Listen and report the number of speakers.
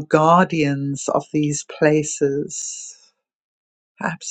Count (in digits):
1